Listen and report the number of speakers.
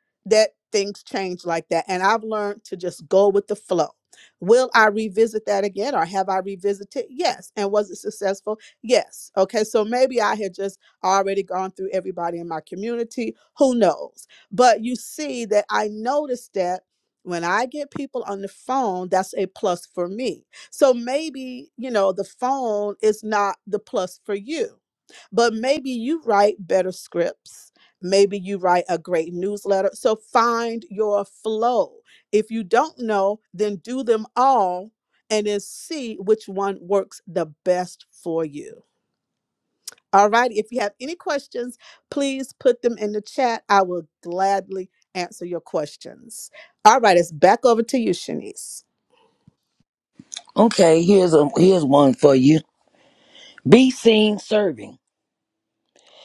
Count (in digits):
2